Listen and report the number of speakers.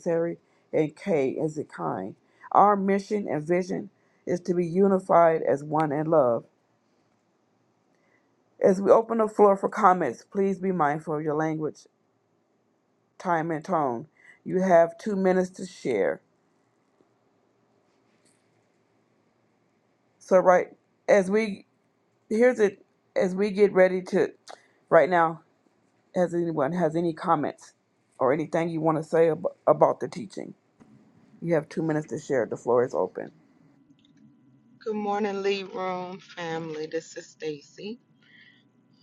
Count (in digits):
2